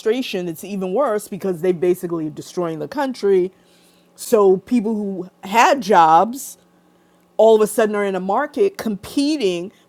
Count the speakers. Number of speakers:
1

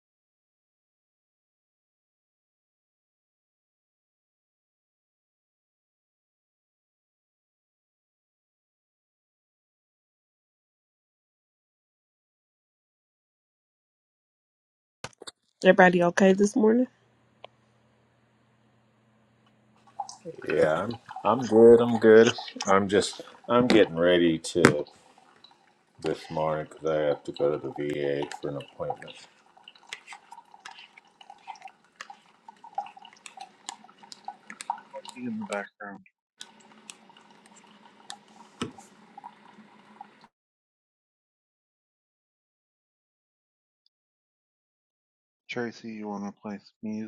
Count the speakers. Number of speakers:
3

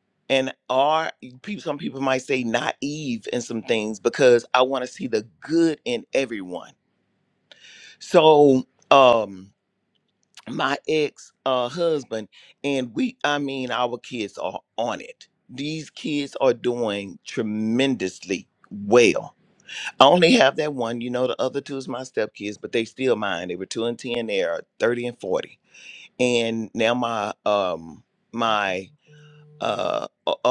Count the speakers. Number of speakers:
1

